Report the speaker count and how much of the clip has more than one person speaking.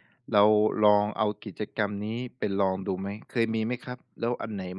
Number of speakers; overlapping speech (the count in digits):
1, no overlap